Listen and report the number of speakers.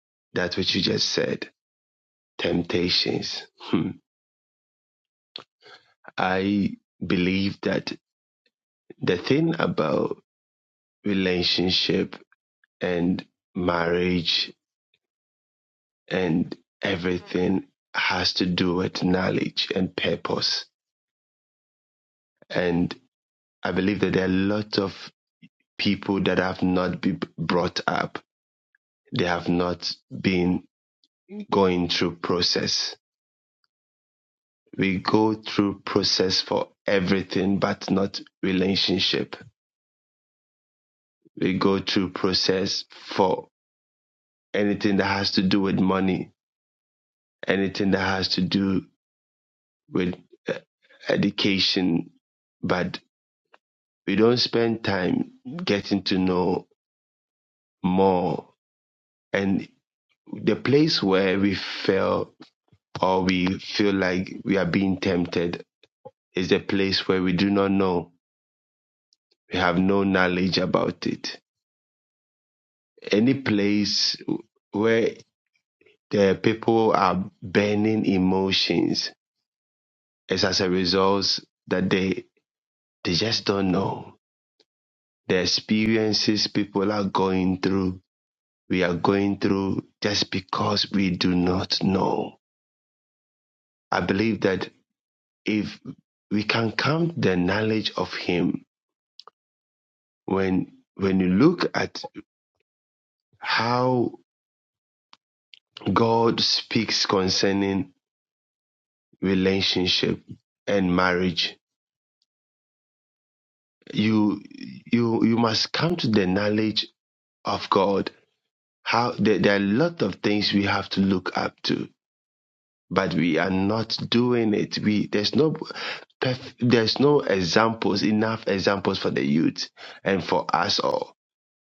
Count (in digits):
1